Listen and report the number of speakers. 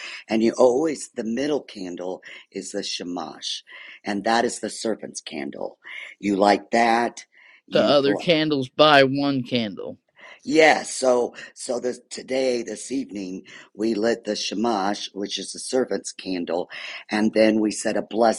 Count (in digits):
2